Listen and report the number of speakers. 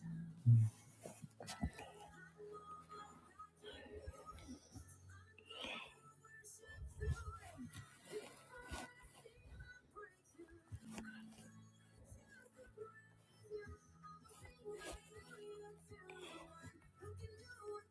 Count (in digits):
0